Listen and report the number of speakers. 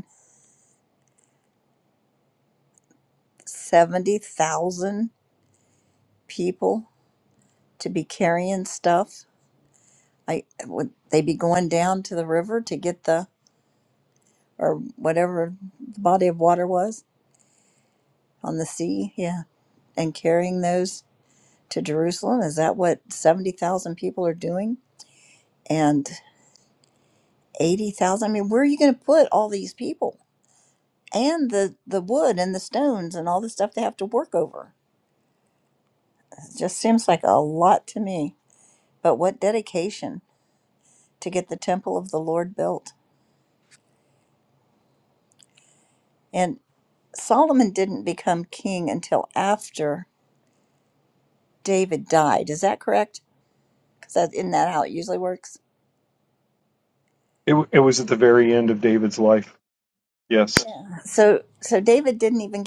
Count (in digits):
2